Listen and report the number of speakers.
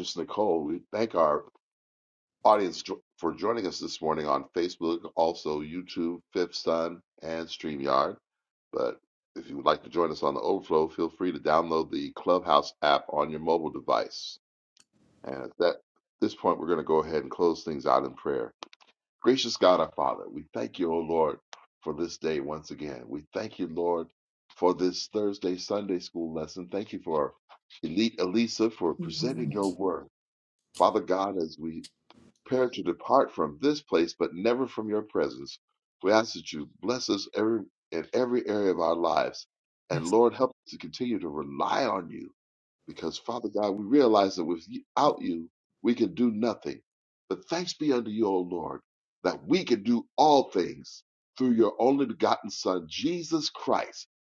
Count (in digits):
1